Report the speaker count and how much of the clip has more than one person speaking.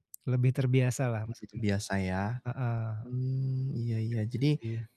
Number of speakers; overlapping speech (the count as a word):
two, about 8%